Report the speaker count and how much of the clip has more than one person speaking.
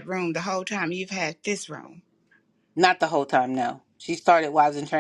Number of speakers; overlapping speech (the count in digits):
2, no overlap